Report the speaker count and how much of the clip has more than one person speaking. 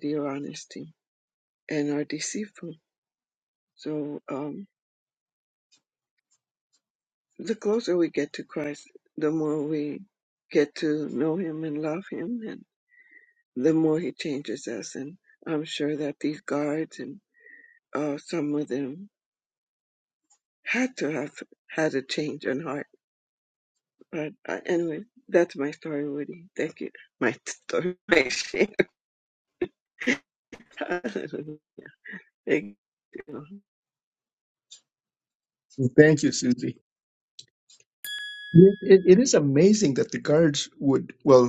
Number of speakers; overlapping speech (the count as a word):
two, no overlap